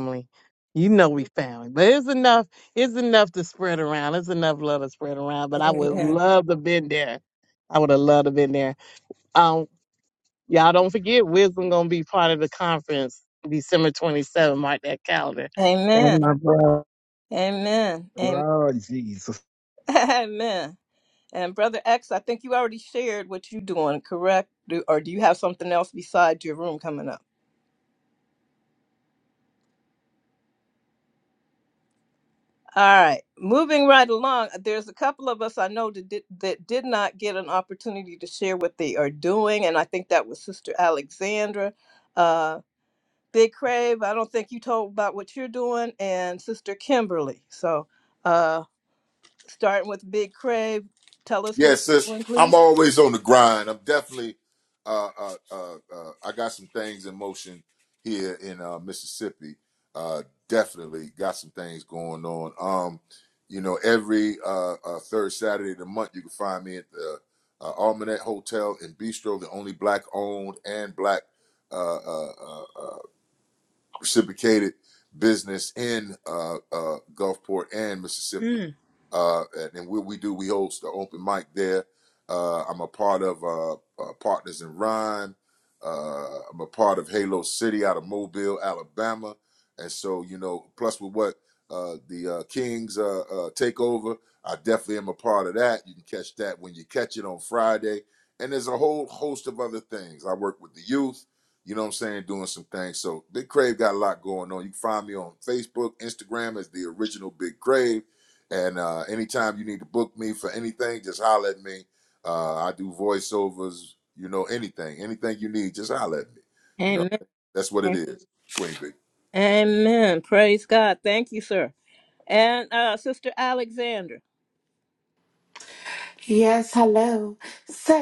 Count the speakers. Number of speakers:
five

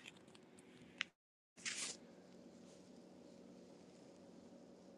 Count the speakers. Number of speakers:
zero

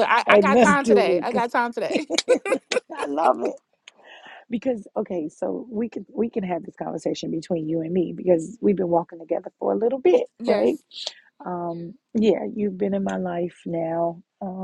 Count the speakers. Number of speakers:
two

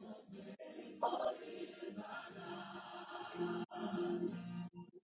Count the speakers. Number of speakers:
zero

